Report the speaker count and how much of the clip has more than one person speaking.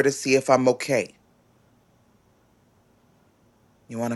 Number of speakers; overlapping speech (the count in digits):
1, no overlap